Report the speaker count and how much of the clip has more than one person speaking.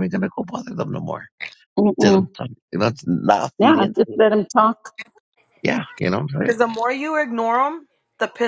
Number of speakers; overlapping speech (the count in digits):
3, about 12%